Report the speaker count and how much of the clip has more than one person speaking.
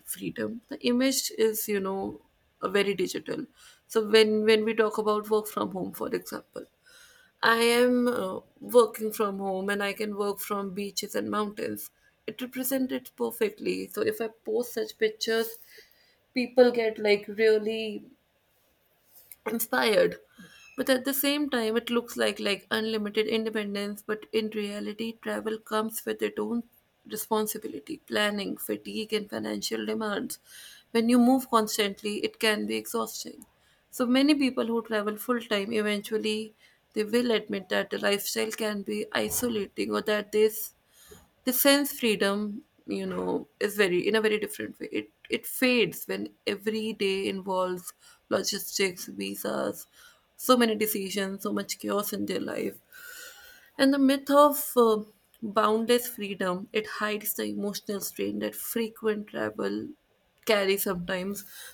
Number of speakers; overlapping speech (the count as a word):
one, no overlap